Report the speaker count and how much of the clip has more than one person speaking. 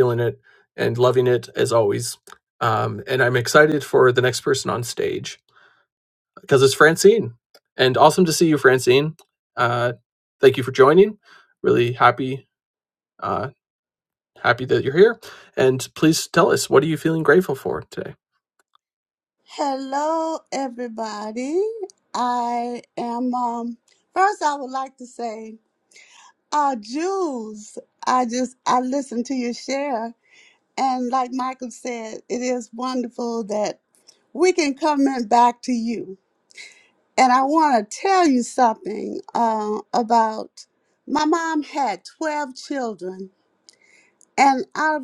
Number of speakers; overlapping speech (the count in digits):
2, no overlap